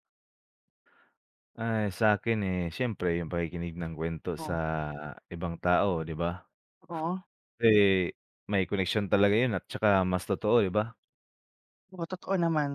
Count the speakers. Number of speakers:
2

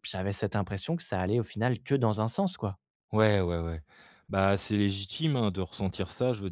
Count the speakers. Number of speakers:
2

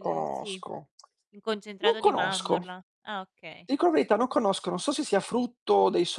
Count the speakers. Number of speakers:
2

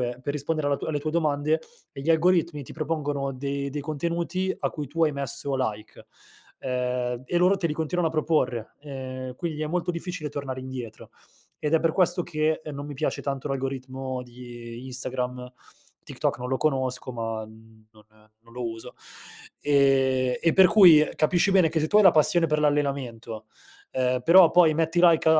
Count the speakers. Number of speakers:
1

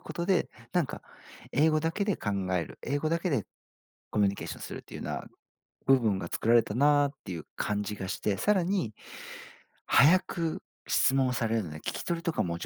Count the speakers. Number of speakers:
1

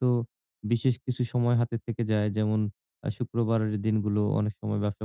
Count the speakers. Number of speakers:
1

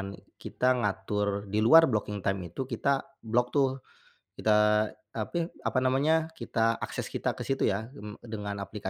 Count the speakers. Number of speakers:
1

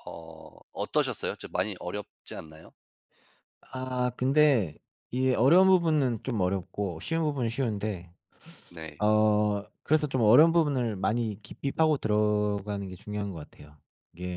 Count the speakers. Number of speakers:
2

